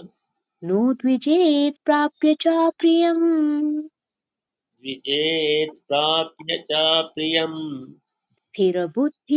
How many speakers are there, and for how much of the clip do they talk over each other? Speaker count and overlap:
2, no overlap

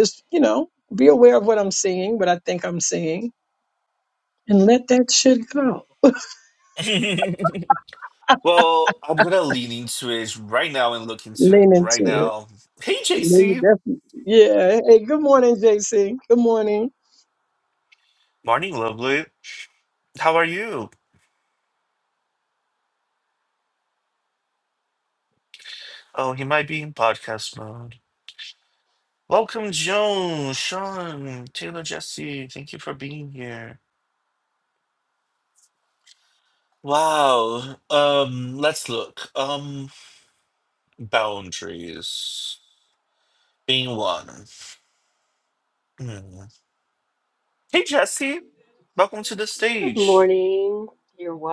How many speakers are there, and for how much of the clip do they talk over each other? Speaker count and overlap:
3, about 4%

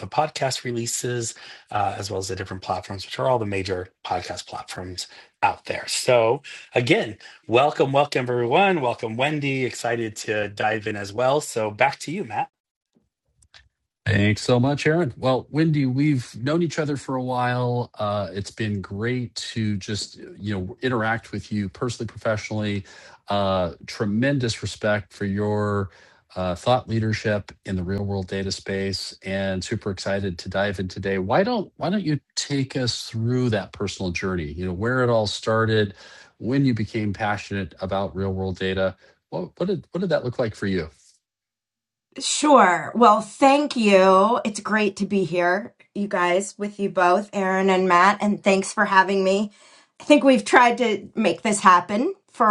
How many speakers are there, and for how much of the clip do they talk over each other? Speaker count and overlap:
3, no overlap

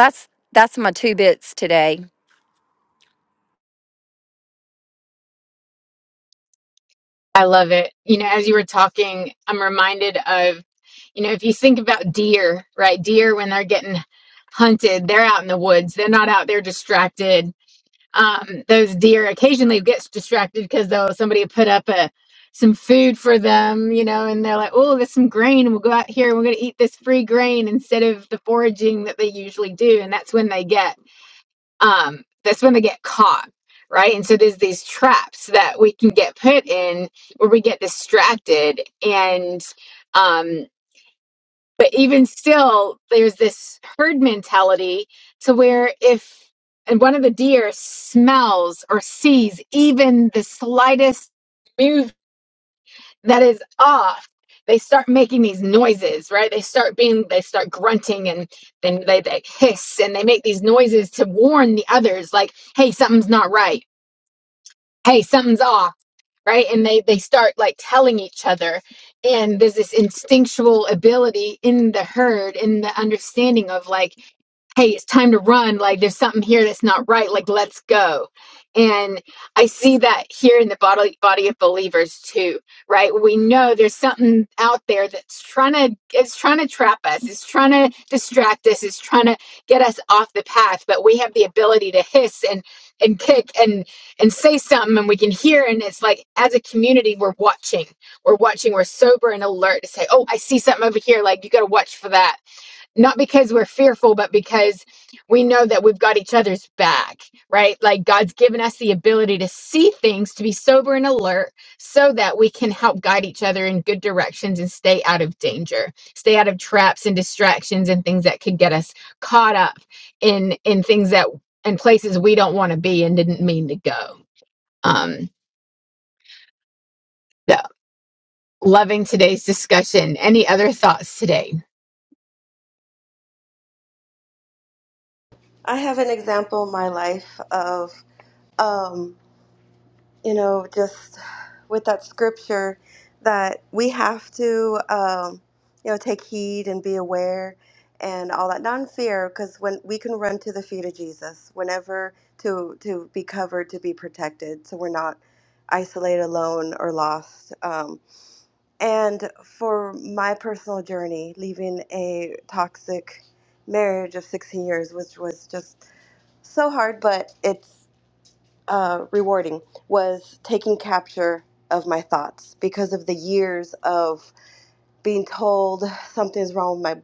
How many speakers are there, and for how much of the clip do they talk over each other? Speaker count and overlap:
3, no overlap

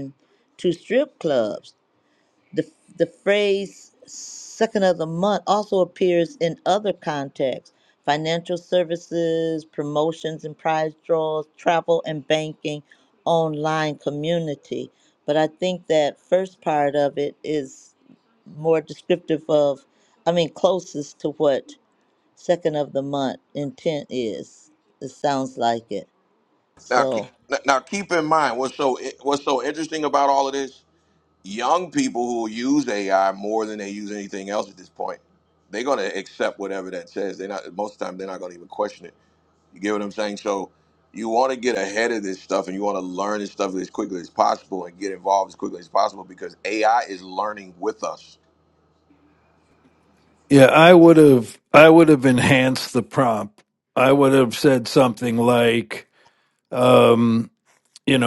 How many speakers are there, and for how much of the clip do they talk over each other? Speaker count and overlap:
3, under 1%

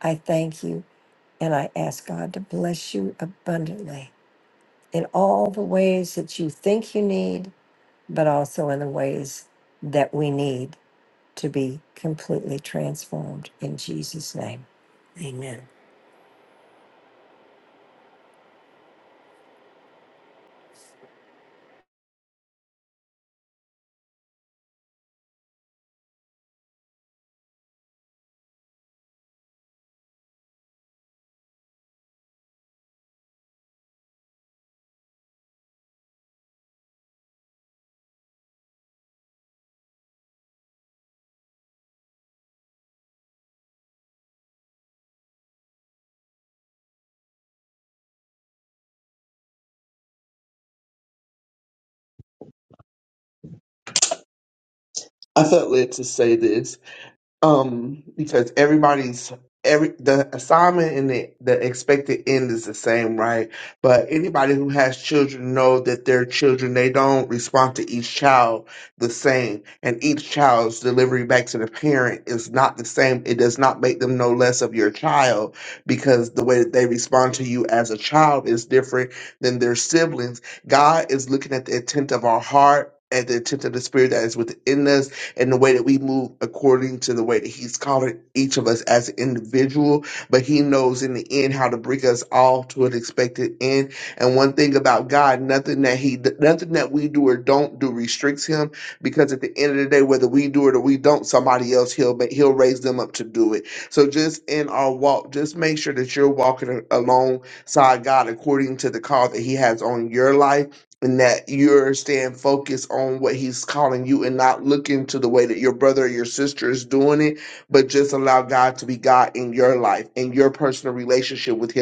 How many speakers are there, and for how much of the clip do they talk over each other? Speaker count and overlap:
2, no overlap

